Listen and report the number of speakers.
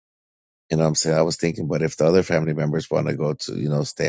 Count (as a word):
one